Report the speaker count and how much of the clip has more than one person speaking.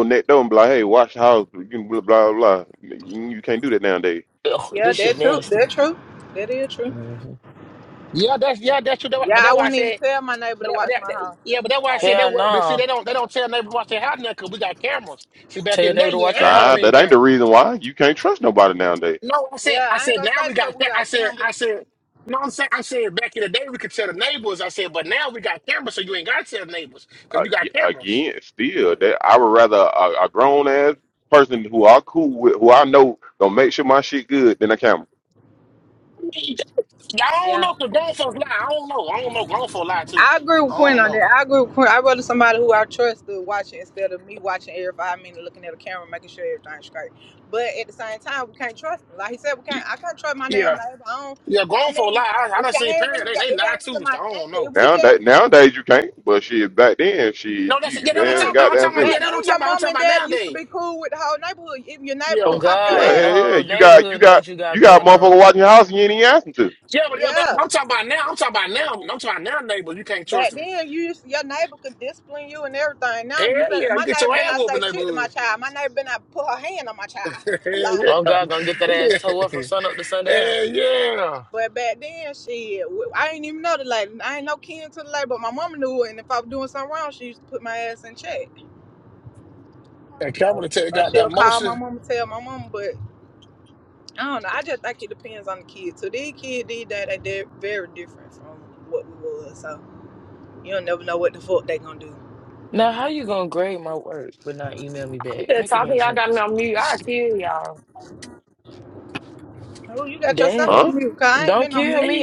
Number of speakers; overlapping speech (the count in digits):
5, about 23%